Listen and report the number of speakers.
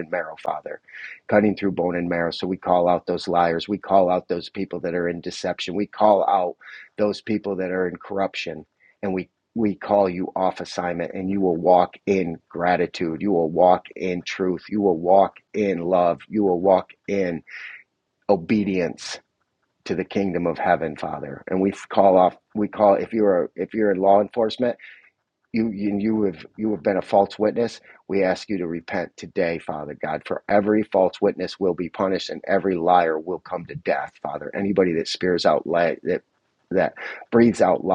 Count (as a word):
one